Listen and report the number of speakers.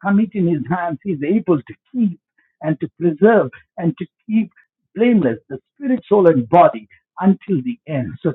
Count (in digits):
1